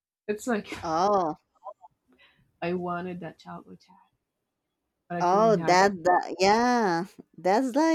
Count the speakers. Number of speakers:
two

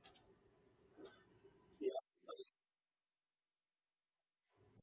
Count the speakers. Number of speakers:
zero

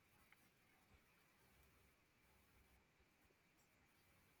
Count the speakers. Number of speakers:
zero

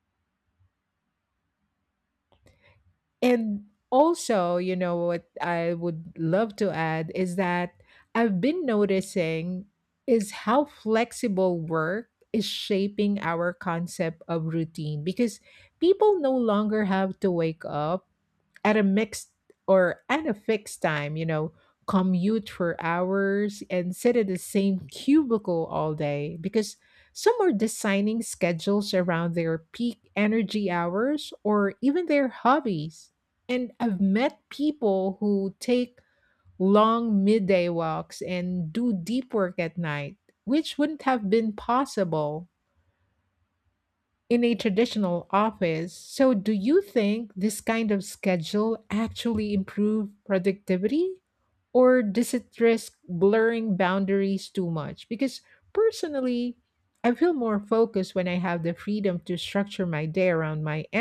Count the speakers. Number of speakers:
one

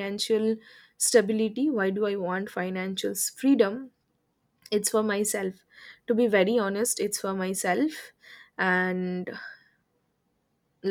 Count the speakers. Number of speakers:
one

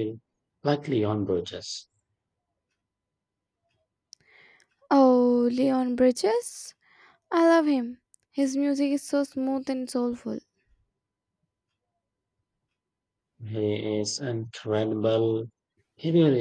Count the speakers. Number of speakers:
two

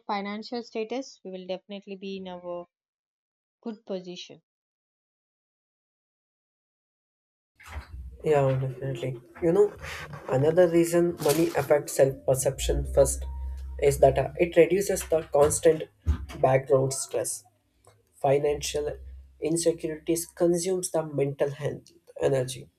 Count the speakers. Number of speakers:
two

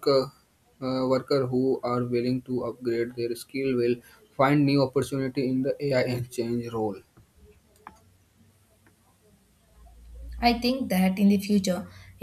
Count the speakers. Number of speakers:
two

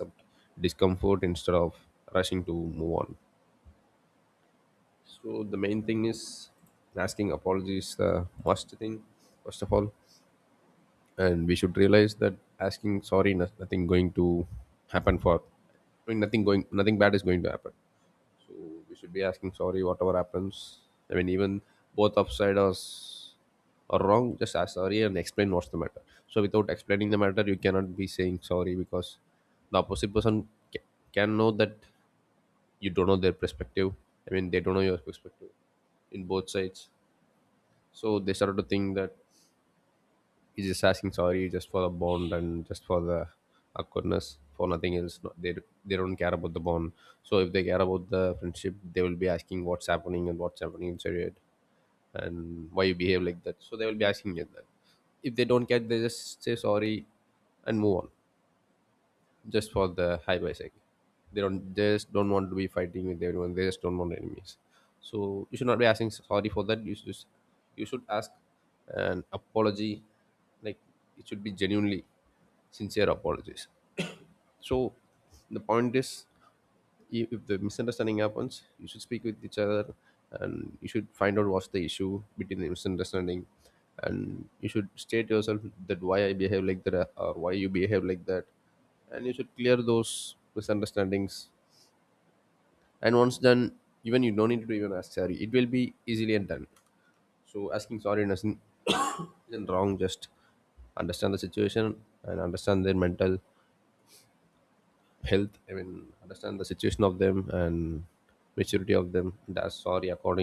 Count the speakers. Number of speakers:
one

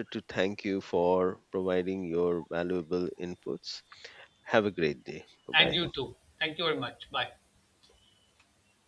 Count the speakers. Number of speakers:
two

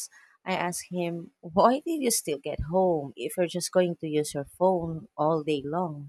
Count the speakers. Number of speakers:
one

